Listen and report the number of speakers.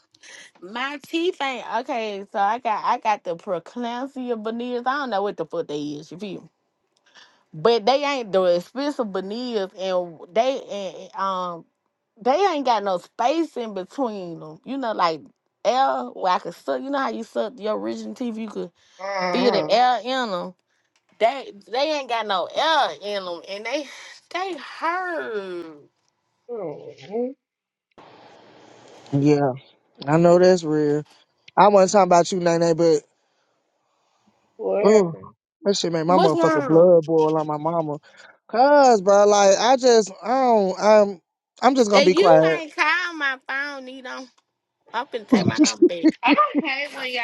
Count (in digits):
3